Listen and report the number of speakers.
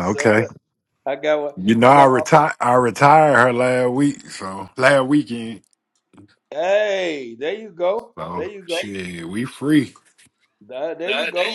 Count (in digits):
2